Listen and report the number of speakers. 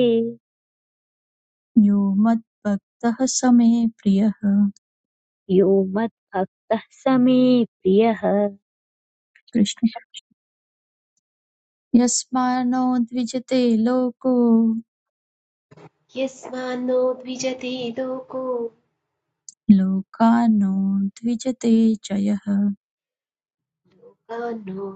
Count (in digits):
3